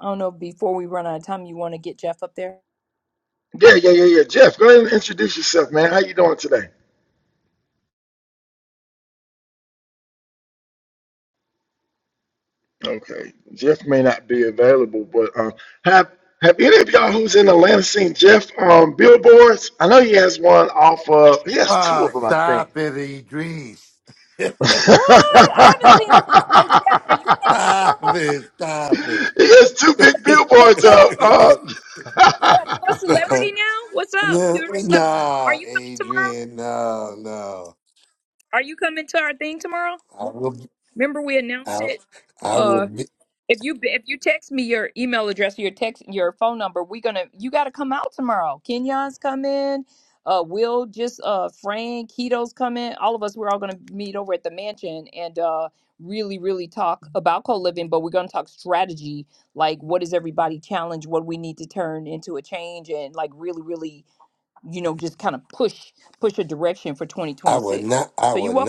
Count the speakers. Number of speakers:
3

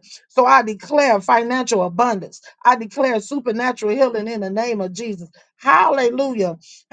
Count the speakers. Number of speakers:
1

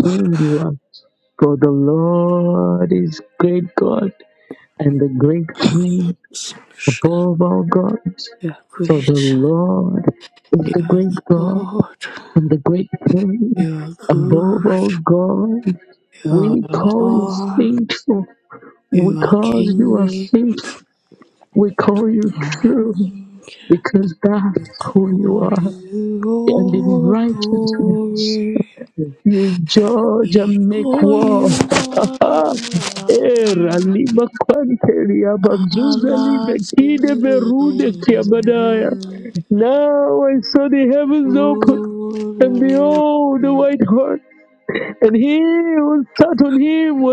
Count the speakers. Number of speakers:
2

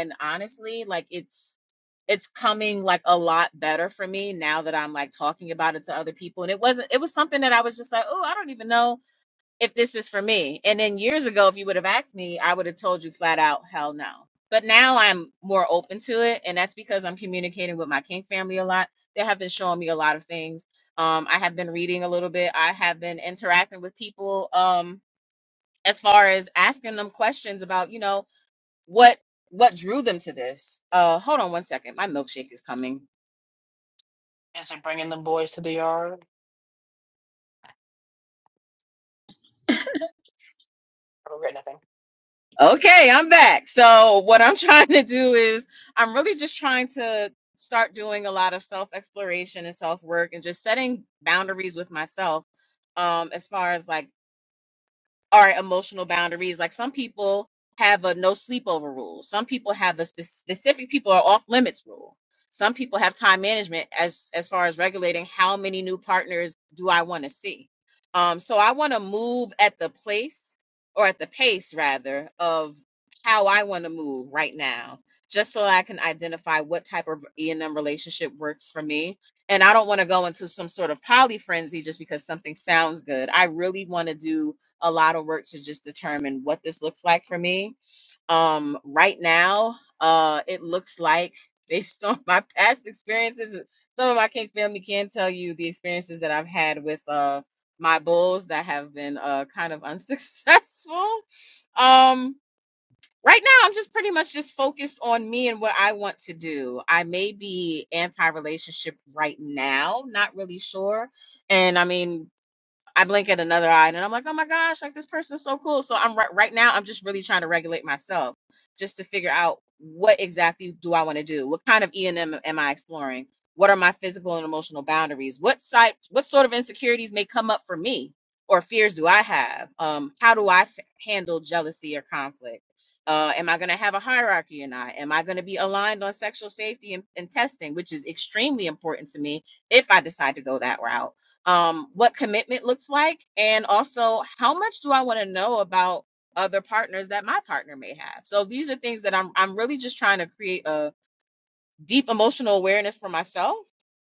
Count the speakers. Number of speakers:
2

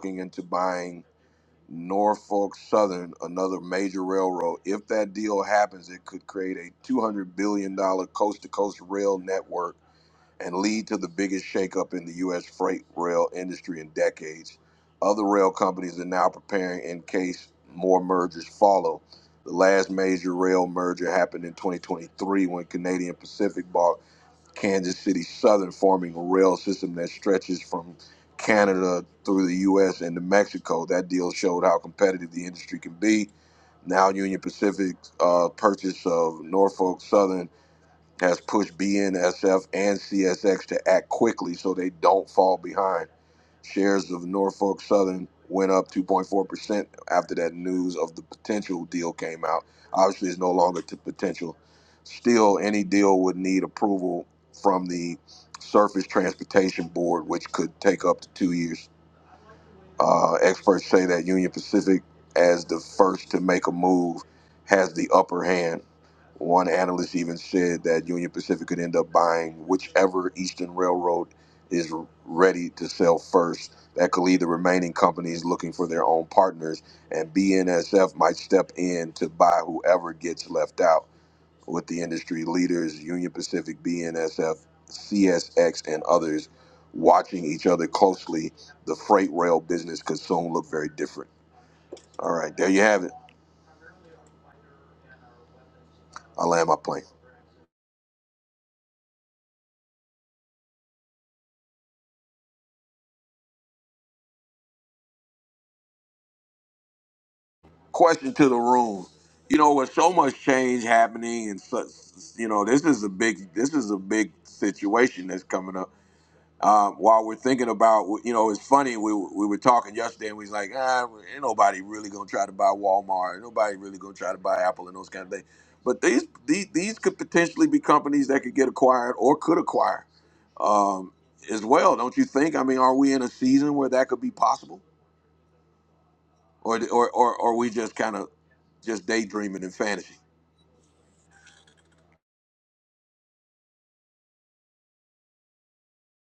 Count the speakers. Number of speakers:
1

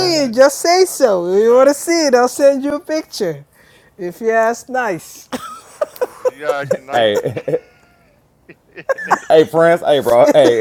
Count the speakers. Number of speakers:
3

